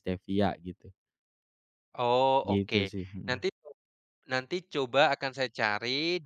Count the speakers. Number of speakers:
2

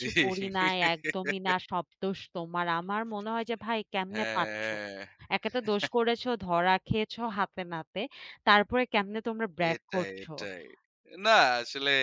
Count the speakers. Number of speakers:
2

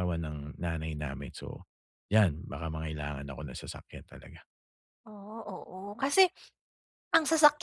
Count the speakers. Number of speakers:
2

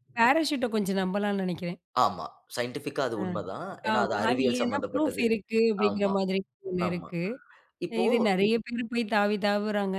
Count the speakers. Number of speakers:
2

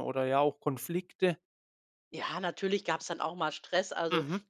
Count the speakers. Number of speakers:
2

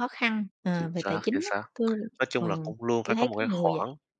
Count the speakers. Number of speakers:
2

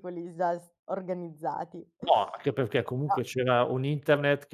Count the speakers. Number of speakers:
2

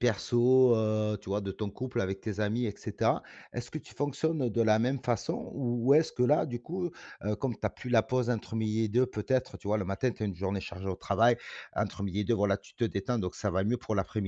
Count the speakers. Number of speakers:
1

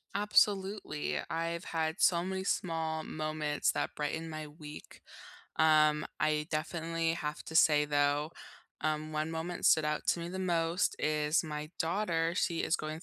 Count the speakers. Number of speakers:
1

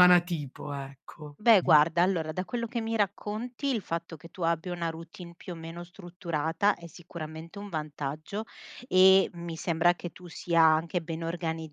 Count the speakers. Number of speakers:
2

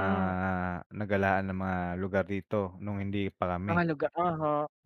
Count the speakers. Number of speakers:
2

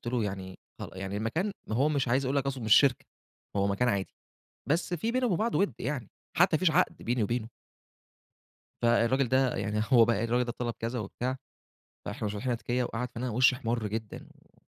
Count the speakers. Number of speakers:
1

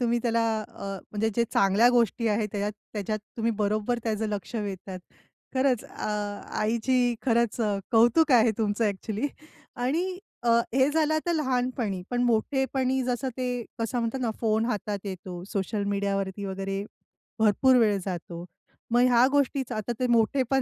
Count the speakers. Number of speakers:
1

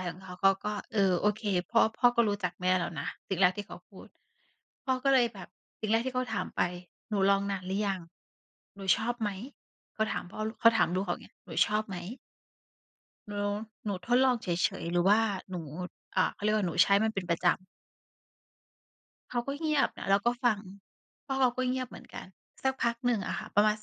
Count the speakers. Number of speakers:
1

